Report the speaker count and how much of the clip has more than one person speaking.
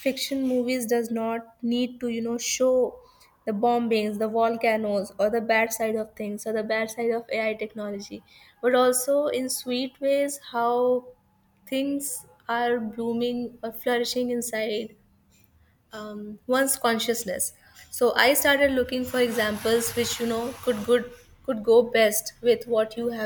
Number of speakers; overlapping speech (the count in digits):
1, no overlap